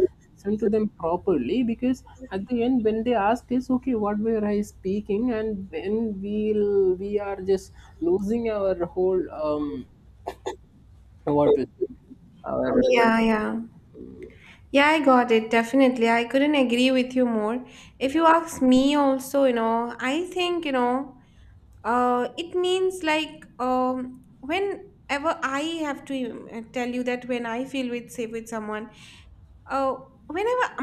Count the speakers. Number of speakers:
two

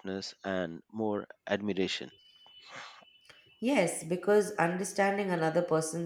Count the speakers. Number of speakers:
two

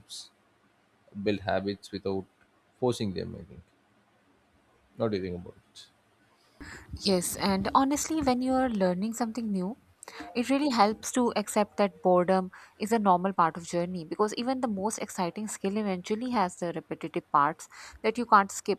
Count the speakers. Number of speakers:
two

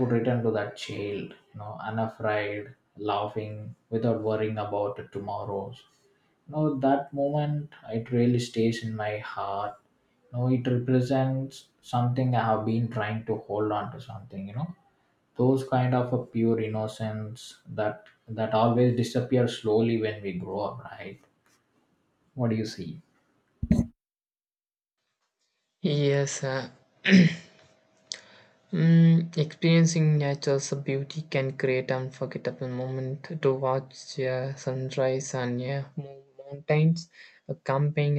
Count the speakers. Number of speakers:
two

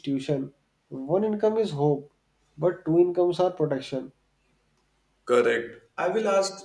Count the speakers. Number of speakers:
two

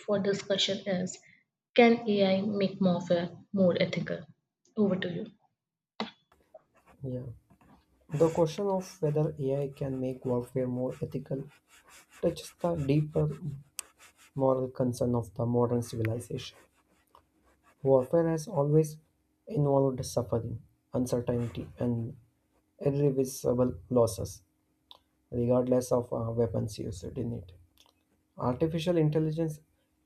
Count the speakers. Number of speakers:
two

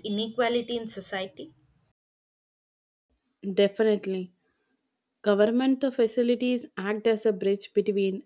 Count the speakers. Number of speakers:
two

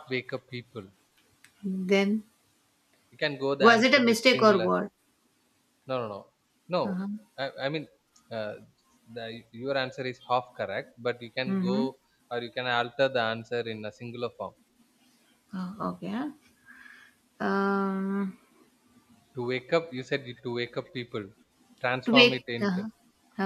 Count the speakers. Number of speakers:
two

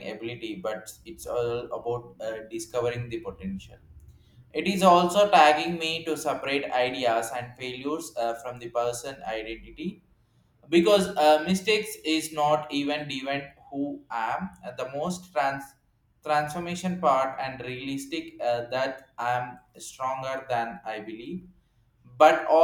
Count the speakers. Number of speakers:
one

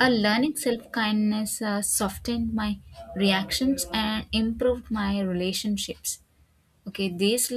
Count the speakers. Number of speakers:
one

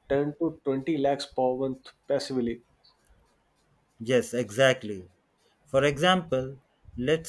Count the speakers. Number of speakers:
two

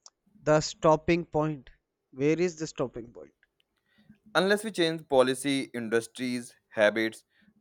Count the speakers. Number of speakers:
two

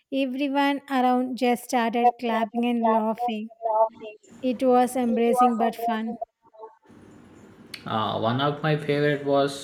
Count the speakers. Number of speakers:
two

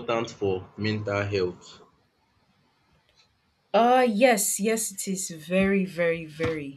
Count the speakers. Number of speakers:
two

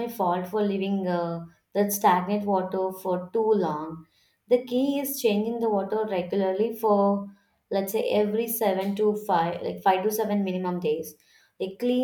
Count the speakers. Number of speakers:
one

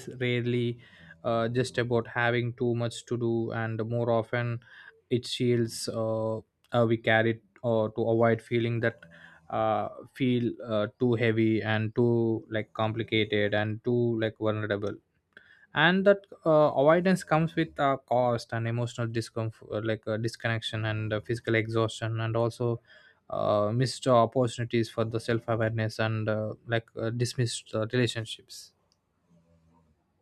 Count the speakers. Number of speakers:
one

